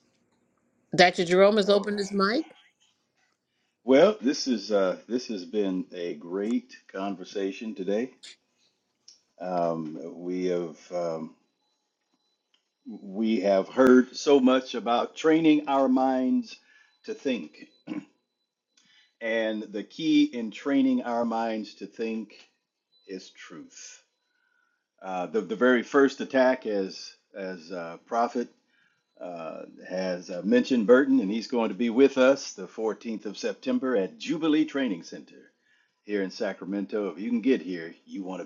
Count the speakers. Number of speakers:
2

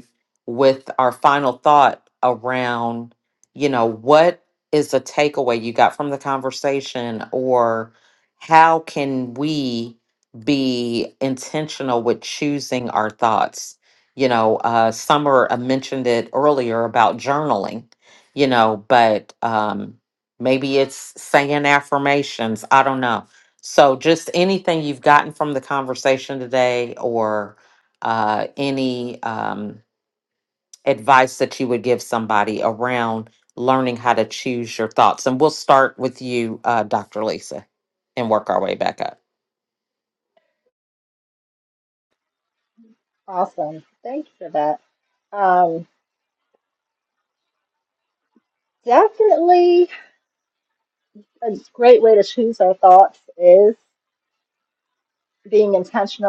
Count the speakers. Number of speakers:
2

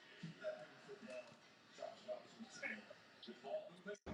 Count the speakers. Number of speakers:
0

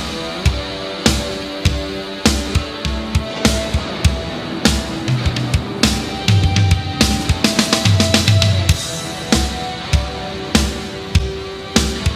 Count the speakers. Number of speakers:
0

